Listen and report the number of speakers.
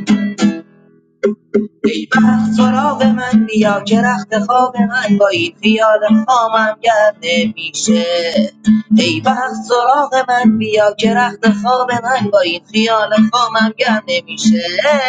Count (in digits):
1